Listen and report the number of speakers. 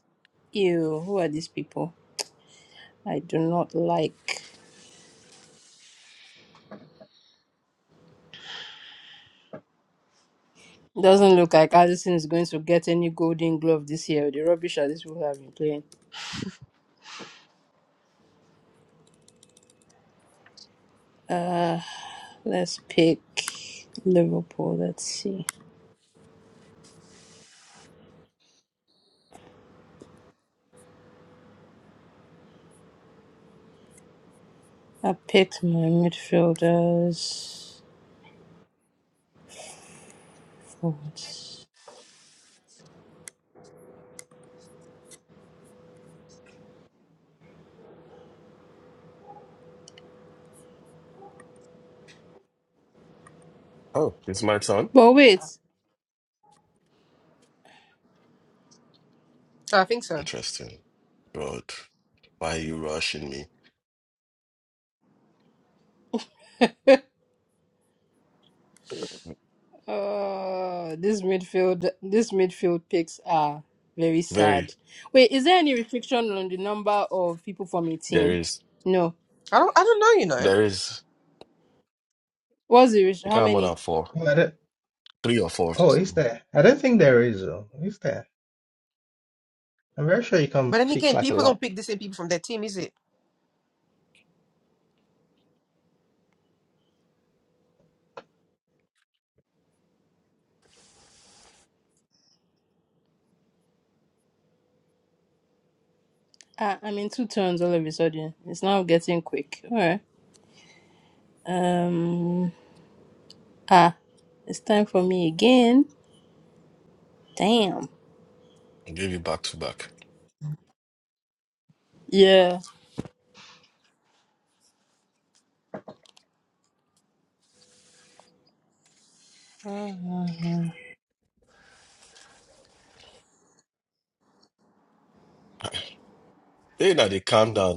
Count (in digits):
4